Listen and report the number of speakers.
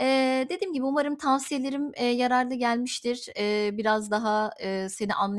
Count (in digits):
1